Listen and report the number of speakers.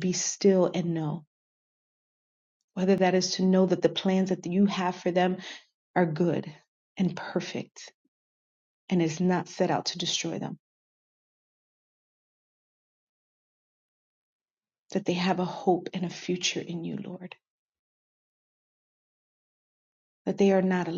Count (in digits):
1